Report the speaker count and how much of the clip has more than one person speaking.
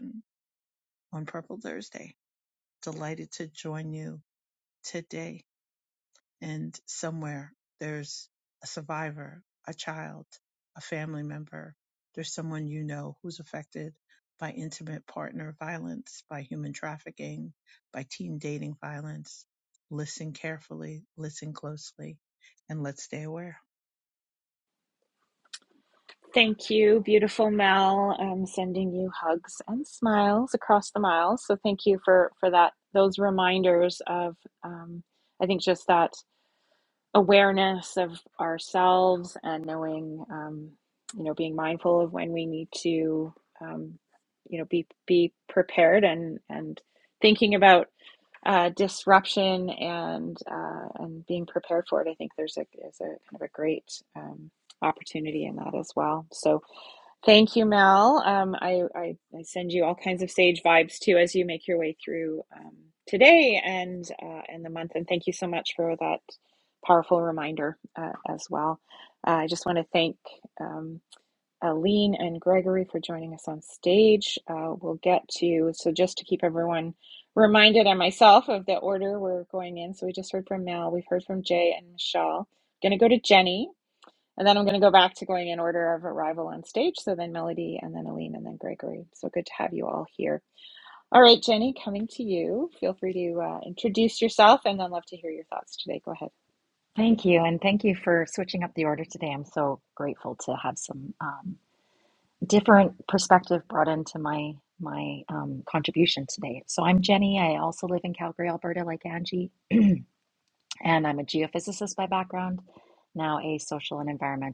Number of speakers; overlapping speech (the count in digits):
3, no overlap